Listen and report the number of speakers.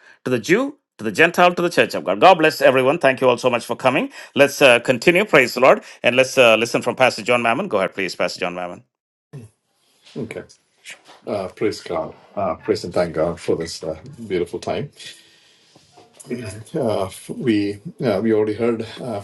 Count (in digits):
2